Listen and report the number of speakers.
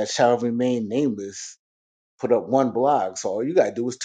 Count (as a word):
one